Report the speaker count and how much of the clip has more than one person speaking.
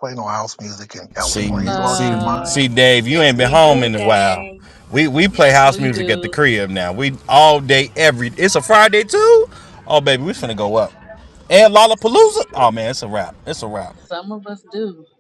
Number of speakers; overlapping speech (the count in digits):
3, about 26%